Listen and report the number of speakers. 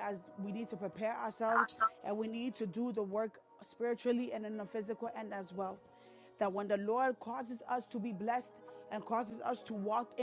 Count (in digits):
1